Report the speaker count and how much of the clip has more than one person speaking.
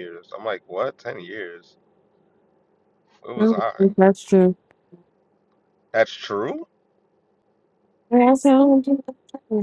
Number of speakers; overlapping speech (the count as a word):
two, about 4%